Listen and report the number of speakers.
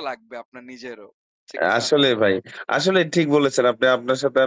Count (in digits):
2